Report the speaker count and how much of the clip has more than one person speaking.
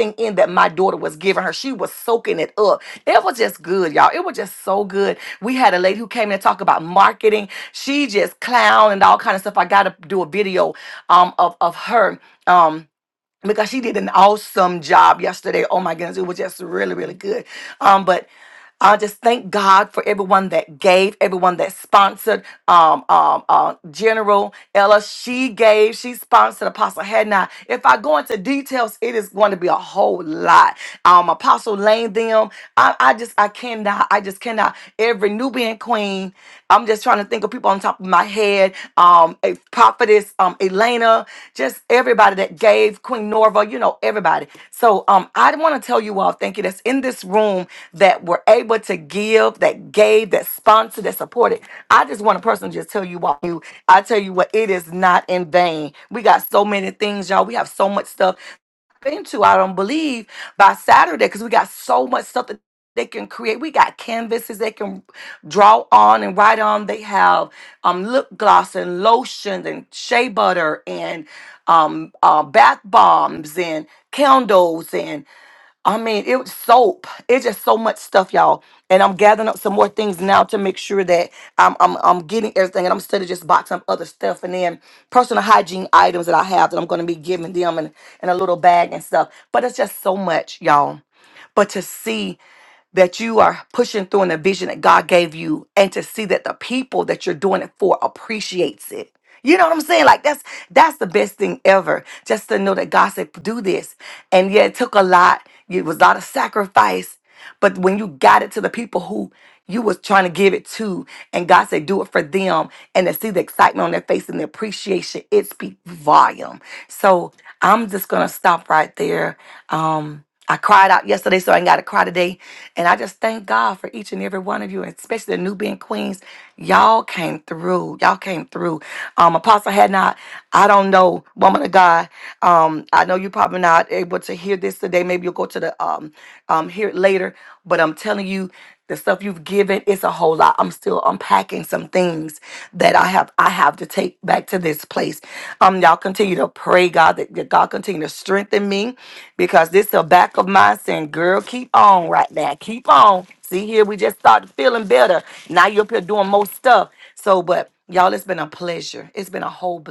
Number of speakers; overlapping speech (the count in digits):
1, no overlap